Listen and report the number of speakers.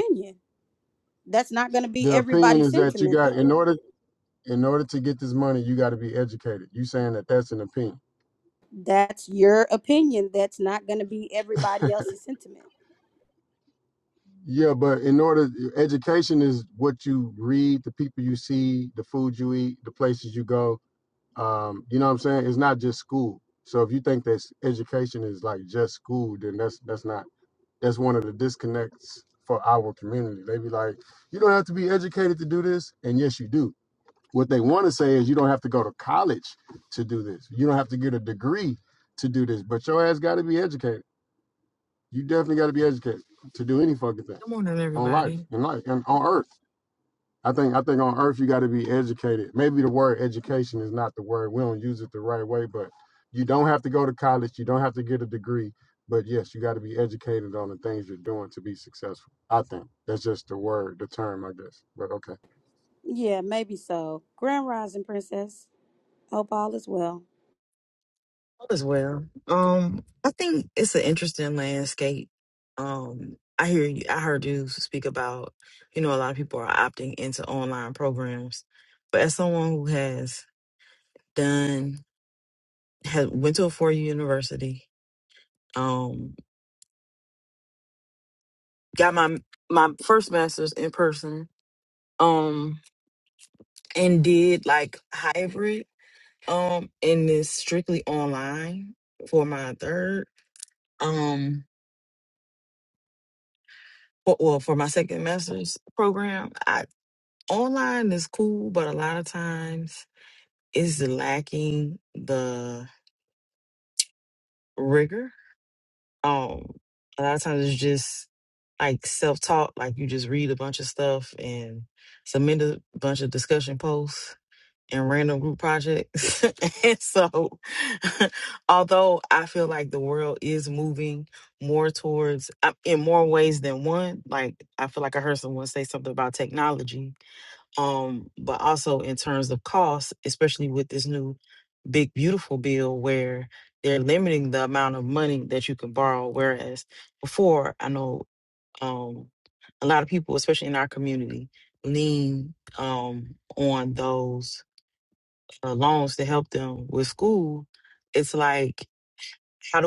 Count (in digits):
3